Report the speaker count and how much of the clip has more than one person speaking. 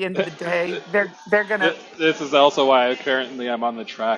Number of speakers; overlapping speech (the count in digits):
2, about 5%